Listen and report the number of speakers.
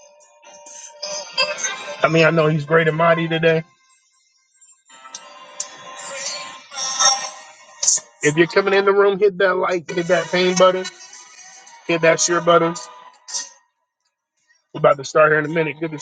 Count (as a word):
one